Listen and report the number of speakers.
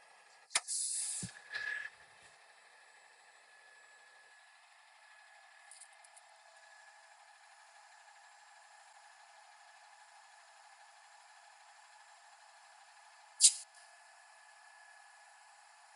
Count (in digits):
0